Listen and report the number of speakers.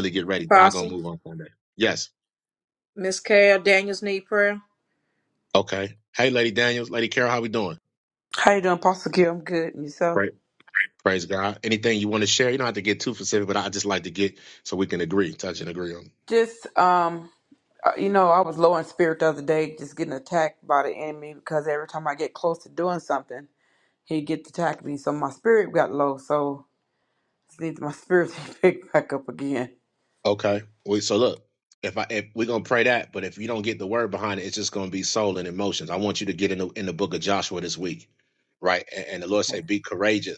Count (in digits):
3